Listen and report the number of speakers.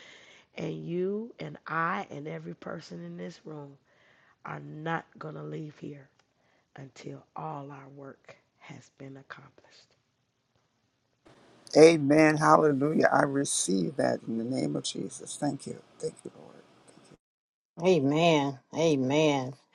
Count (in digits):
3